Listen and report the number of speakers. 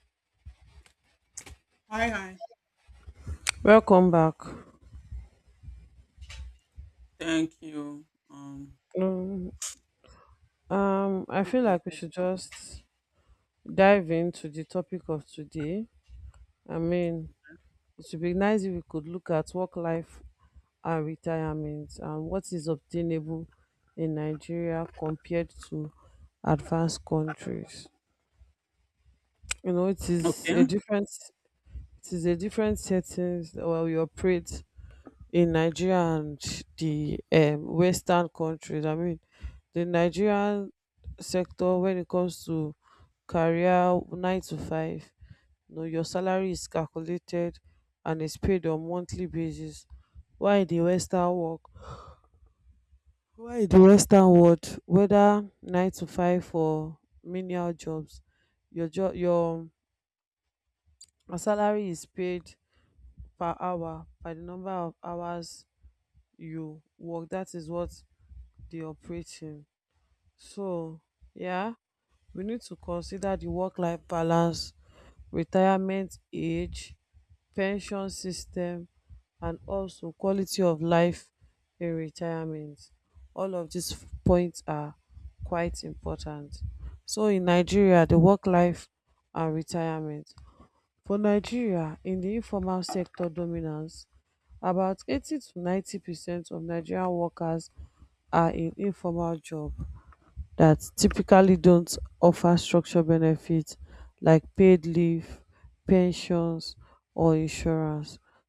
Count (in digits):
2